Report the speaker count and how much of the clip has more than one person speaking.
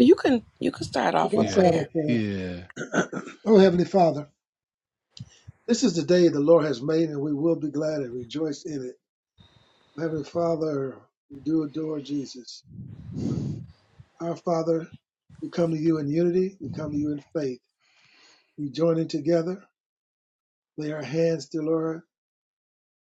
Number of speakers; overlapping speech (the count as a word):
three, about 3%